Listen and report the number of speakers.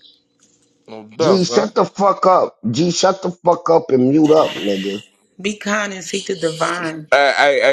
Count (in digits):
3